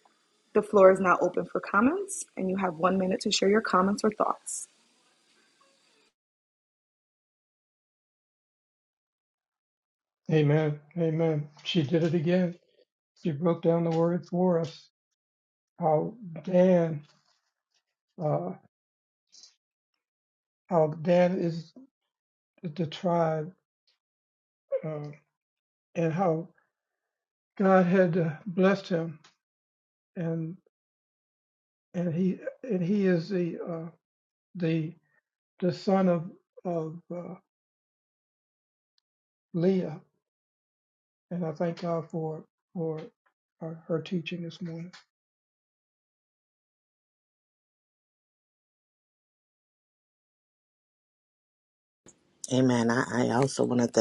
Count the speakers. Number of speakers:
three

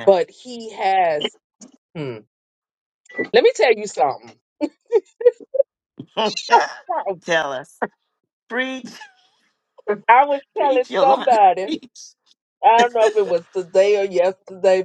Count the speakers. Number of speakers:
two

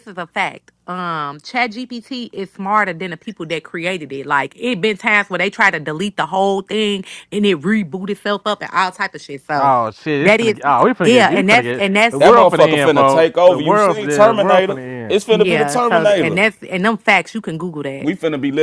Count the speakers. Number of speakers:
three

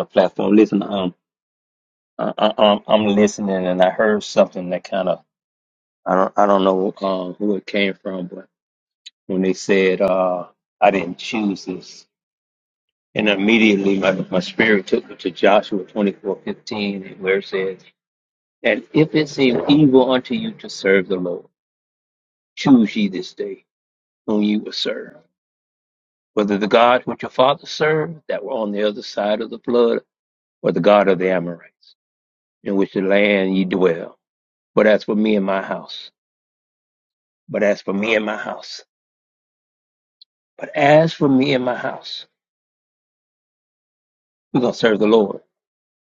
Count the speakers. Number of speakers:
one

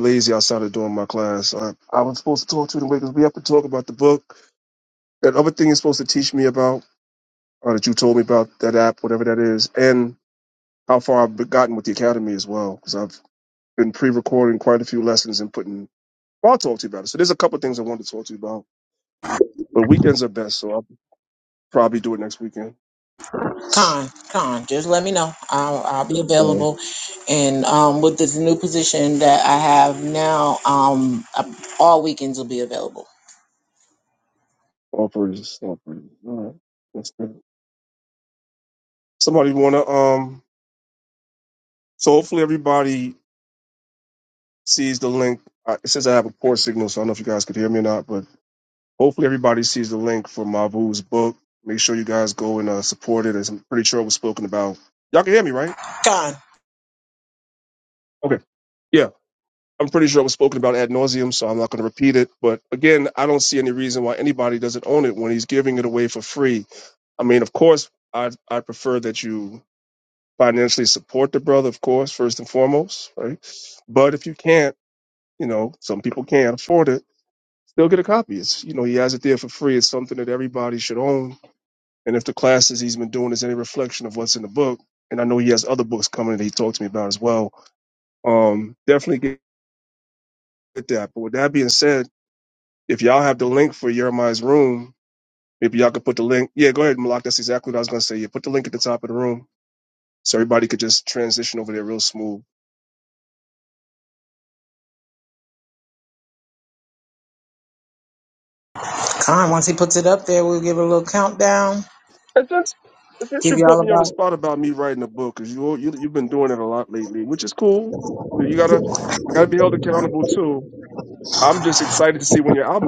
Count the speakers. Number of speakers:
two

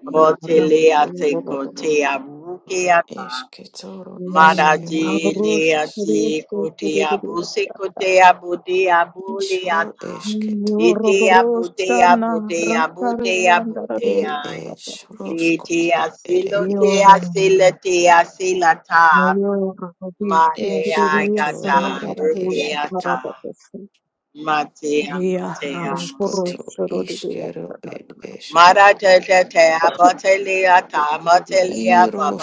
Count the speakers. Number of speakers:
three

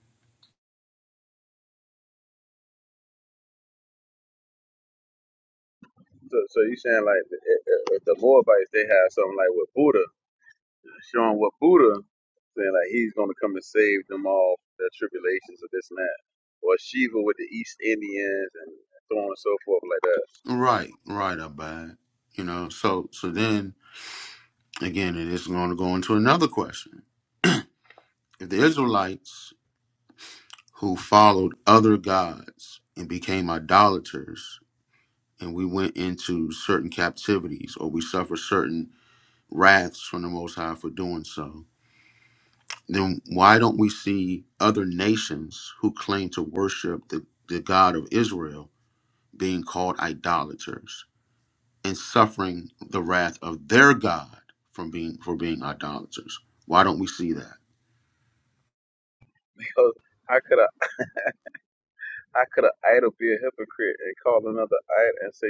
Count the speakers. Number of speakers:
two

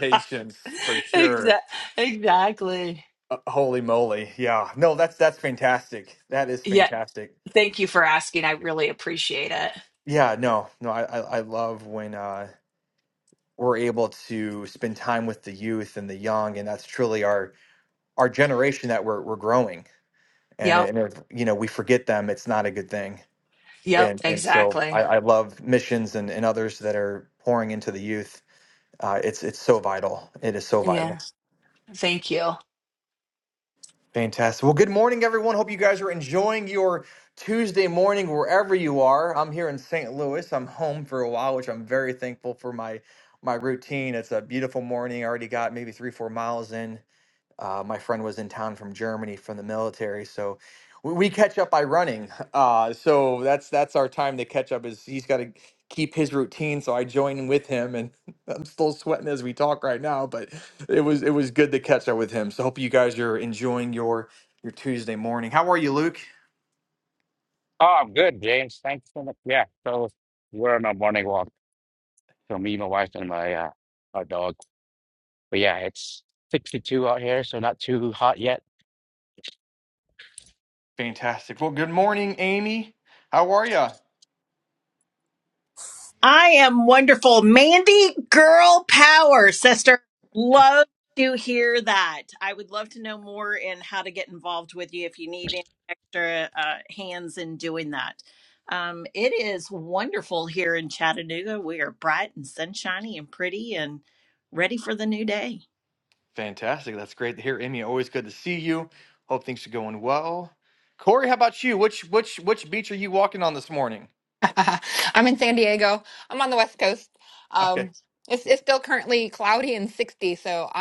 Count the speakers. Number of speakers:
five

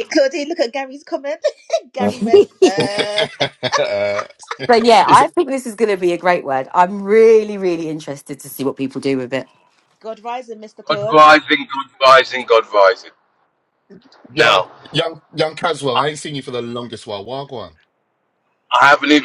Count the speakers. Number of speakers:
four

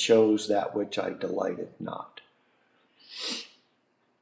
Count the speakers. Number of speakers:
one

